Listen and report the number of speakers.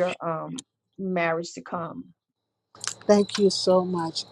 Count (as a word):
two